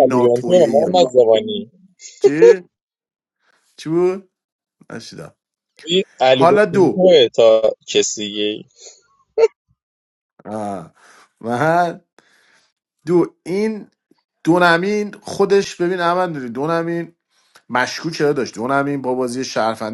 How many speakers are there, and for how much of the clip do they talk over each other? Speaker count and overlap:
two, about 9%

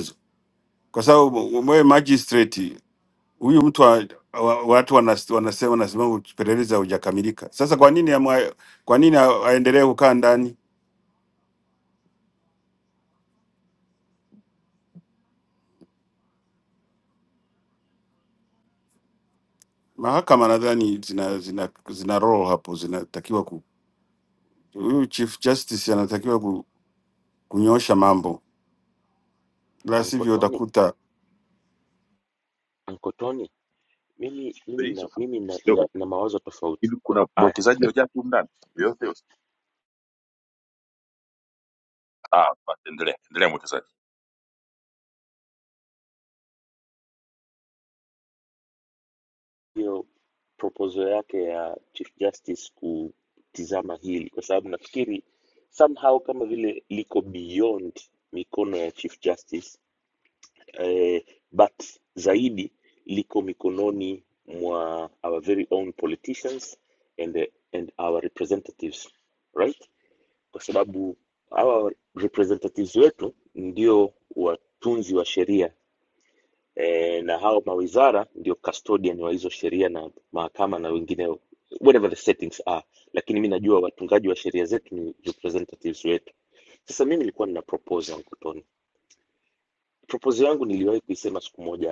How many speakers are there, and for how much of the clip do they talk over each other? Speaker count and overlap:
three, about 1%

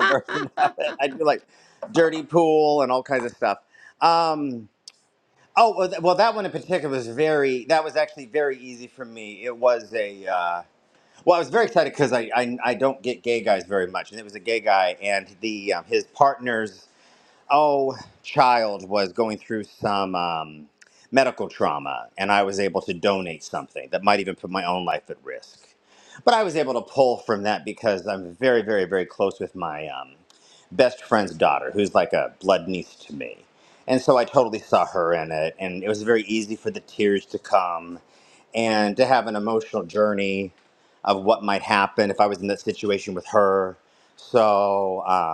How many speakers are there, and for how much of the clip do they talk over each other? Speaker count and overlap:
one, no overlap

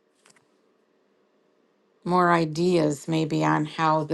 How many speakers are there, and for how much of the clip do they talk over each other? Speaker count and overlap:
one, no overlap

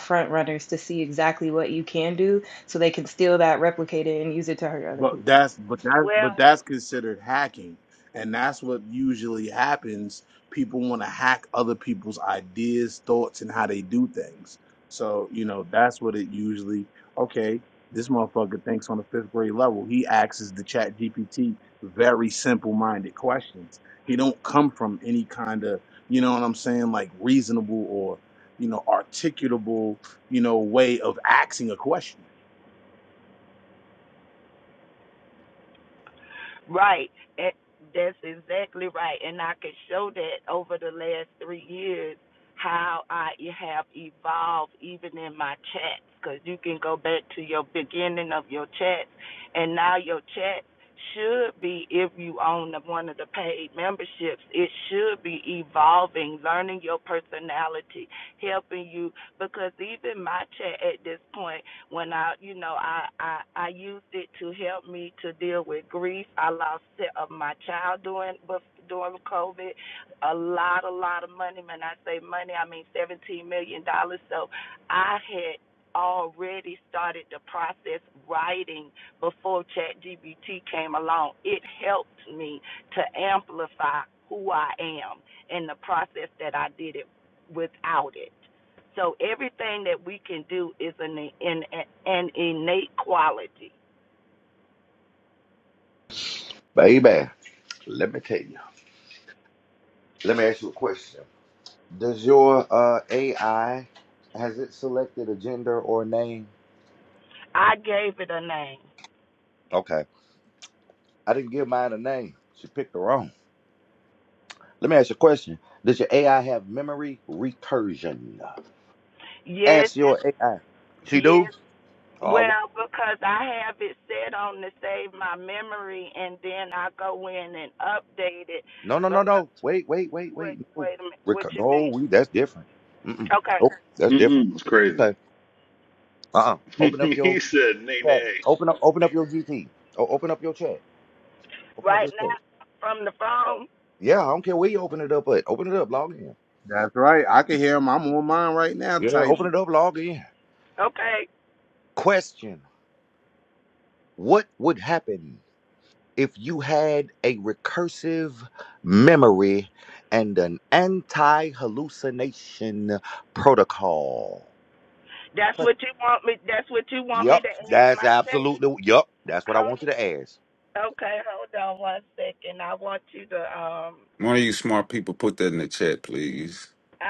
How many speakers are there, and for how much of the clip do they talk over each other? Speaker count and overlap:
six, about 4%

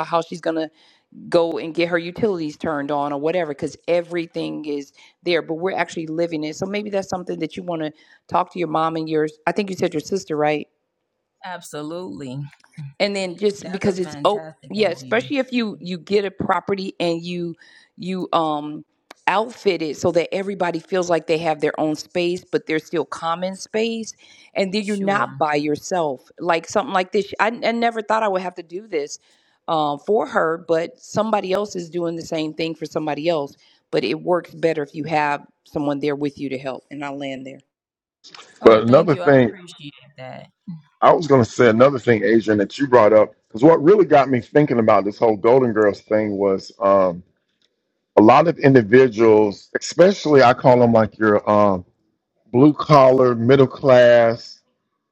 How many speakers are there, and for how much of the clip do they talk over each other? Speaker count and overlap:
three, about 6%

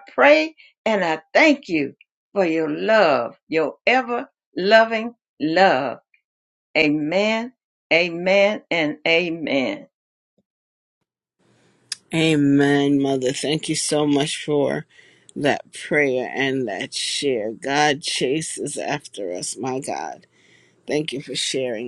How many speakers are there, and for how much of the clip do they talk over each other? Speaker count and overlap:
two, no overlap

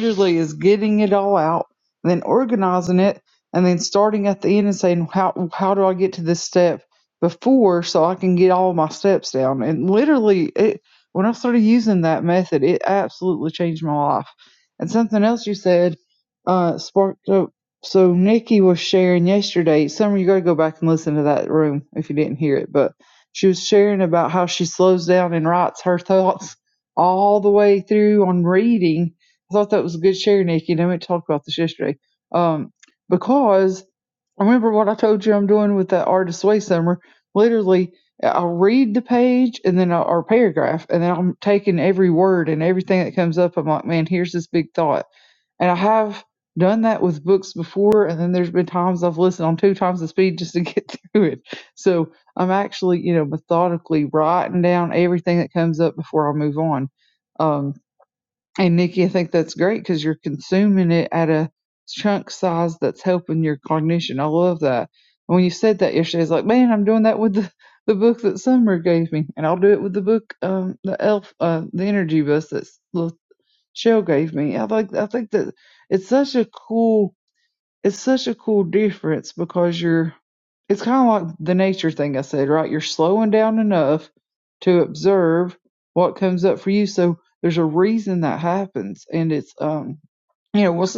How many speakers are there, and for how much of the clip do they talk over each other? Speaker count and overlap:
one, no overlap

